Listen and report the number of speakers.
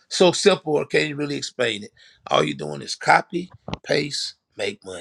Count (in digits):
1